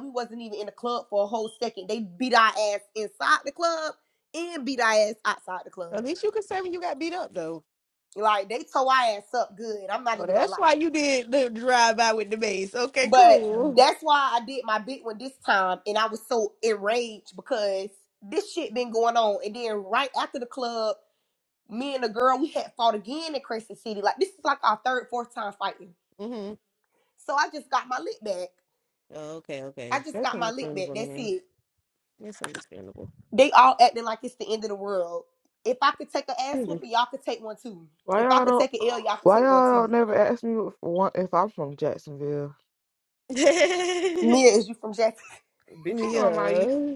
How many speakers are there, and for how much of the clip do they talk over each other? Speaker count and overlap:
three, about 11%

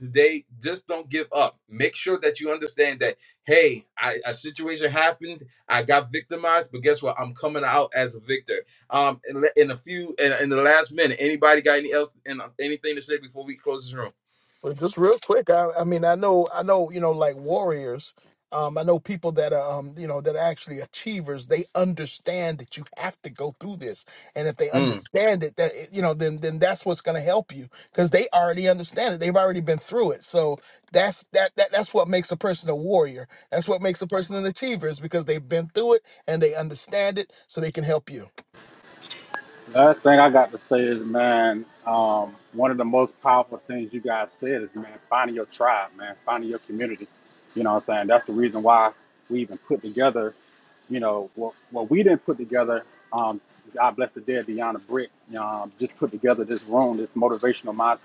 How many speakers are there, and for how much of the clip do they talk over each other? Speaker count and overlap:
three, under 1%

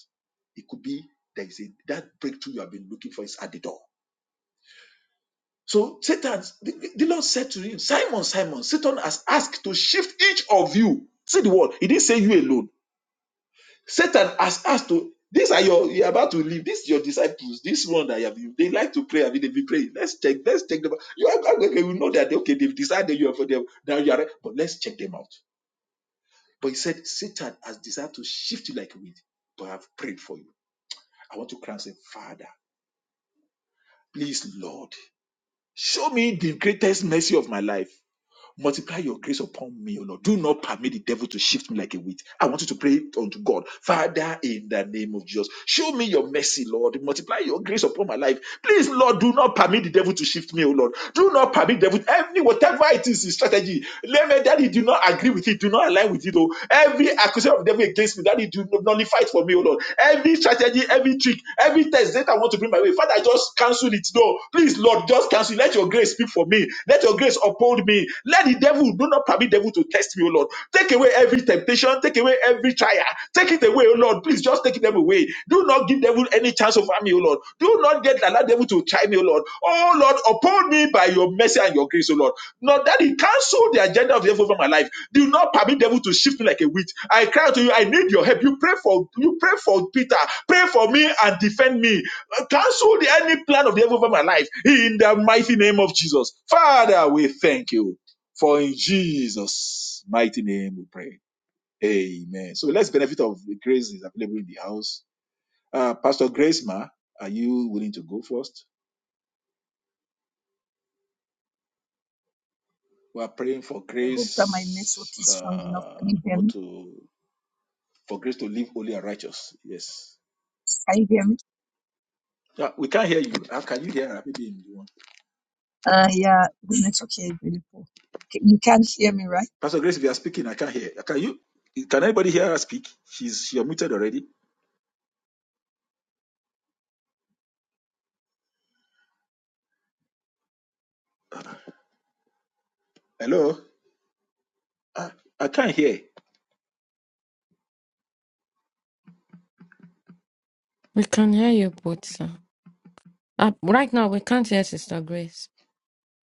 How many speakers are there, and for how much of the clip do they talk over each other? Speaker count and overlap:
three, about 1%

